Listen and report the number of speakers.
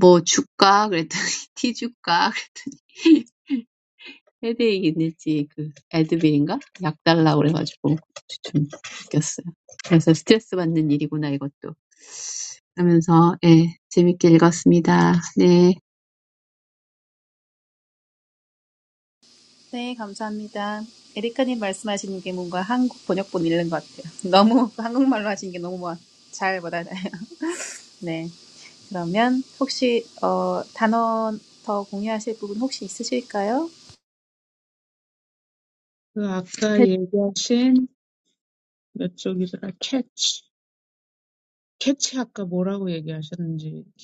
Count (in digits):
3